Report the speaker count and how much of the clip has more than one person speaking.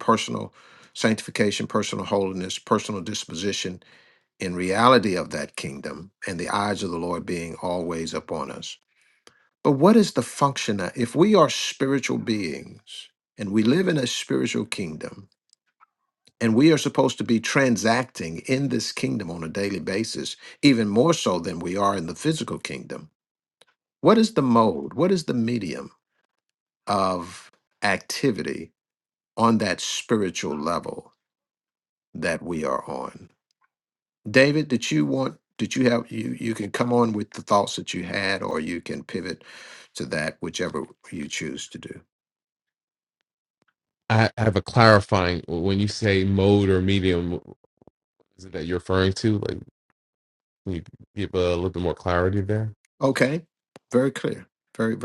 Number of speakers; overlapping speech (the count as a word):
two, no overlap